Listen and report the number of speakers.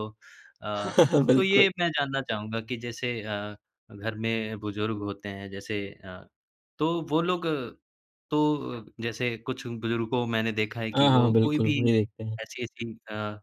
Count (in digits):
2